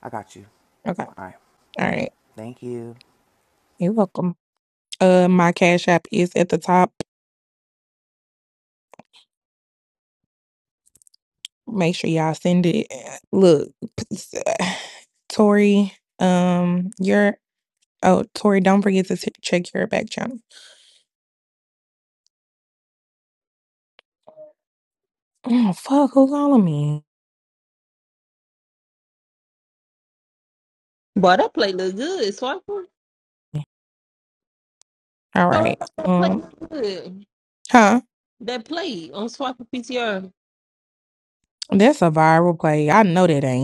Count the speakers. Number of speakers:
3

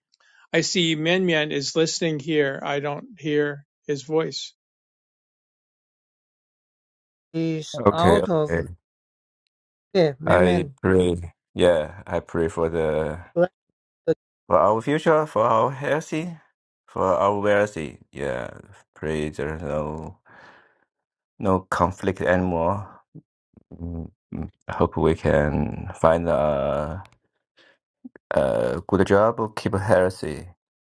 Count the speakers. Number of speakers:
3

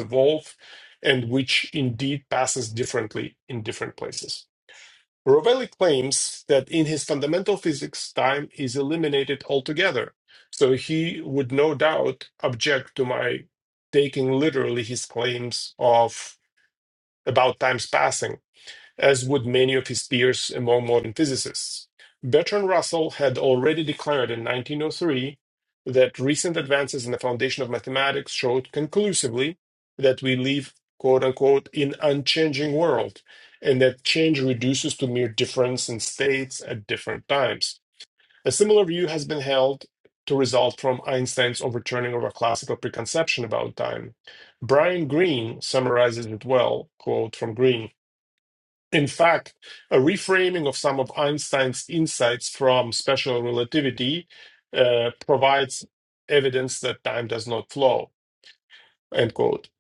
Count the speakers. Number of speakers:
1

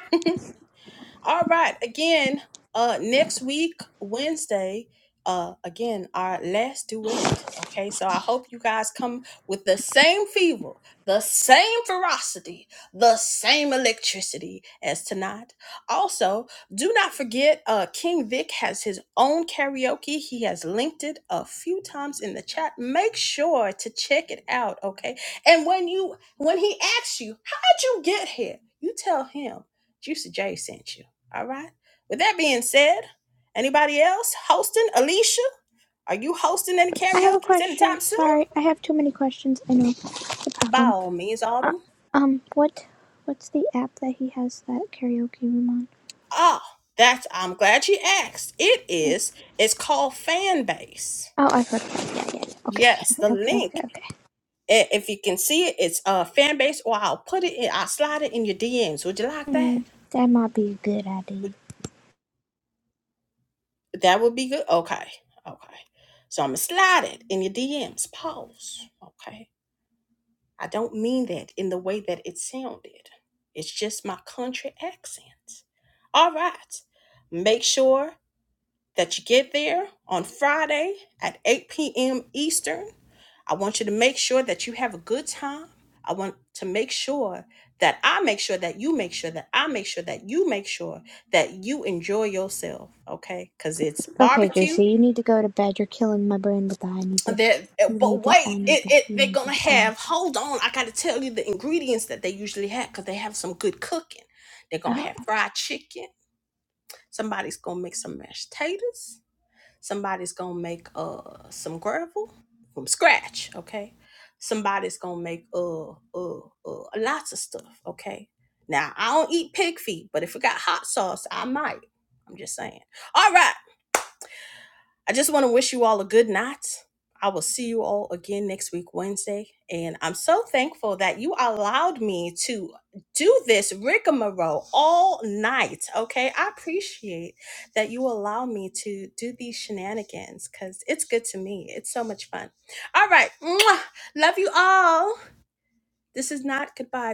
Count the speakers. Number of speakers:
2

